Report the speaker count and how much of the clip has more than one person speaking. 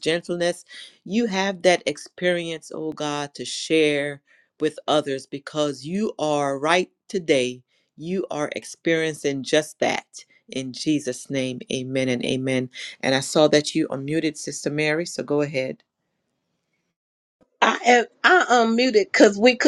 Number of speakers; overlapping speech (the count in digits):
2, no overlap